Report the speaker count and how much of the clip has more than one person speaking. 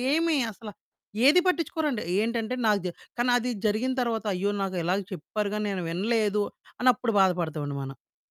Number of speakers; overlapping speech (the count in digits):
1, no overlap